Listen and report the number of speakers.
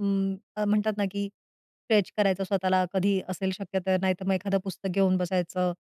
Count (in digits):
1